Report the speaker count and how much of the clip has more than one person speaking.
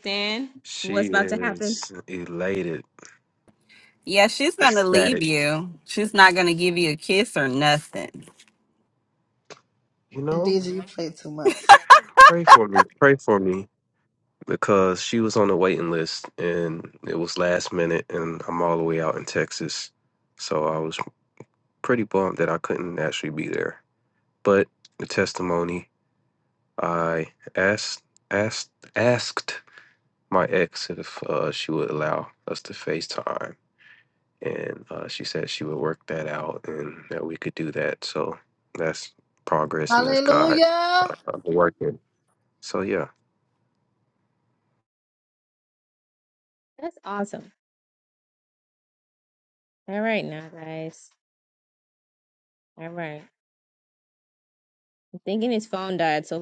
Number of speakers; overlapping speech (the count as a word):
four, about 4%